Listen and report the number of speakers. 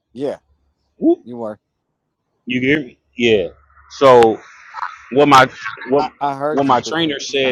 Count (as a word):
two